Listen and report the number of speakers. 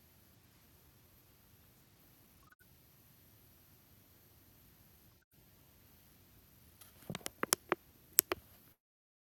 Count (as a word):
zero